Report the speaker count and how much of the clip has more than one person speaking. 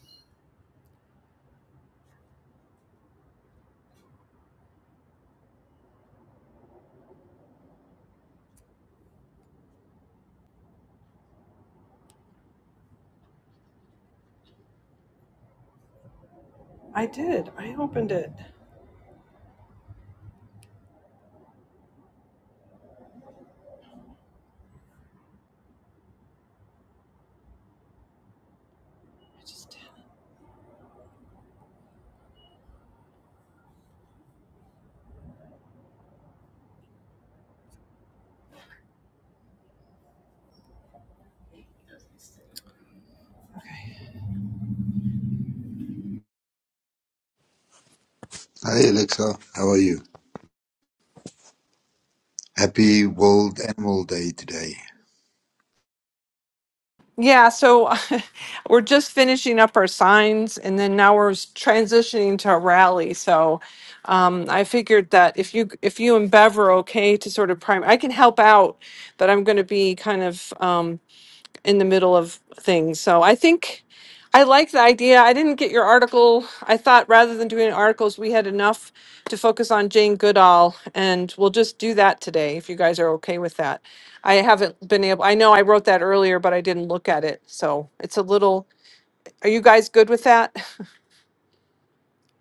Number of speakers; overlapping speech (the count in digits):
2, no overlap